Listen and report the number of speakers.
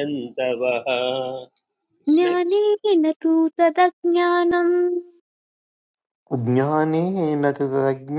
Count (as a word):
three